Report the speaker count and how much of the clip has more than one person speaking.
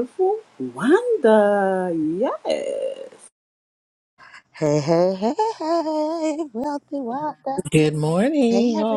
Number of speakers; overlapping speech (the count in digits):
3, about 5%